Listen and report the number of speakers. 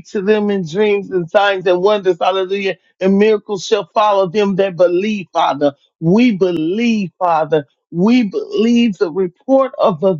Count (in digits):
1